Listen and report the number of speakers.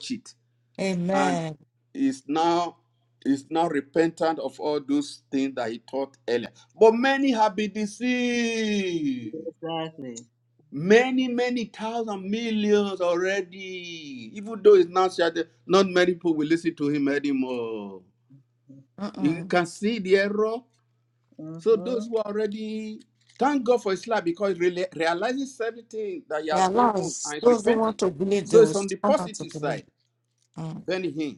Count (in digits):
3